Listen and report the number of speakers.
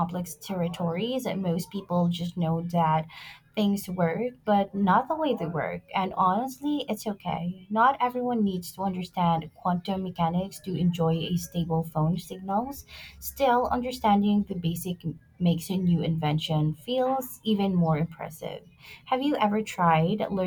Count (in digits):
1